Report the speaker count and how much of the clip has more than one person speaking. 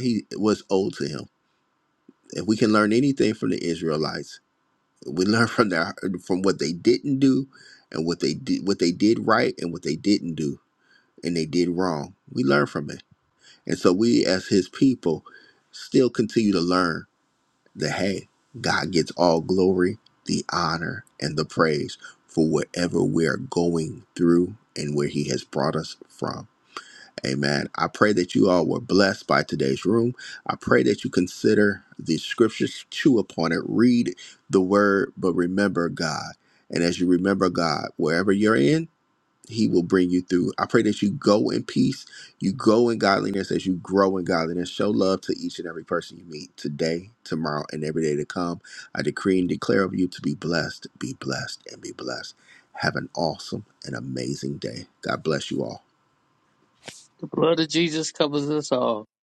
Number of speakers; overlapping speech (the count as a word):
two, no overlap